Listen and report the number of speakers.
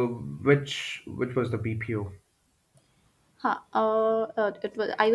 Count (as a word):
two